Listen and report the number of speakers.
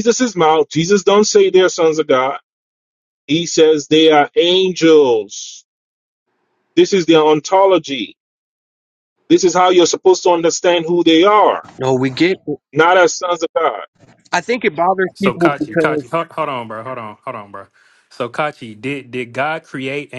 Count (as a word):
three